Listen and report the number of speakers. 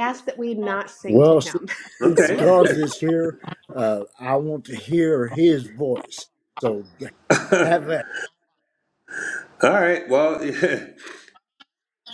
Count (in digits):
3